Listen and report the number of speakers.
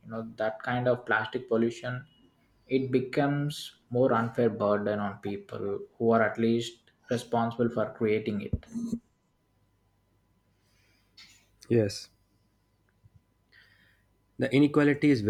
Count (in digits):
2